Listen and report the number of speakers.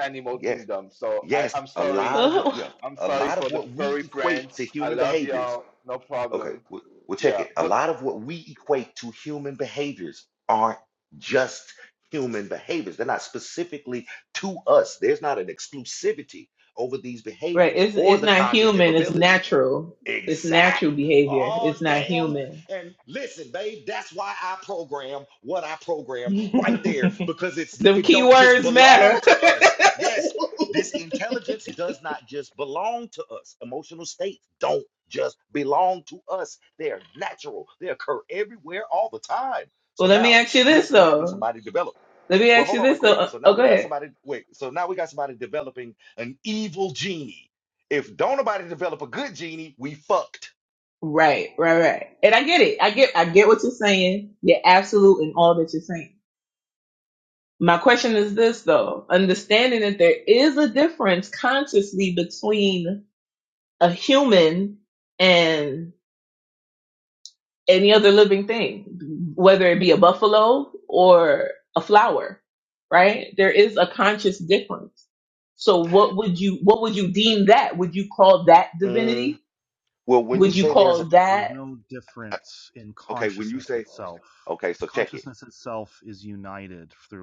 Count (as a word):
four